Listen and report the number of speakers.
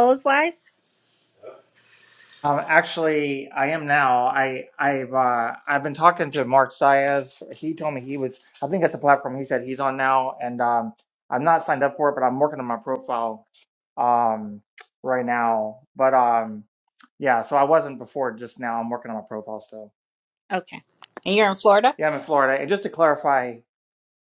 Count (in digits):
2